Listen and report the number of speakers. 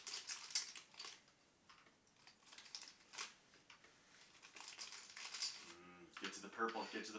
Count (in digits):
1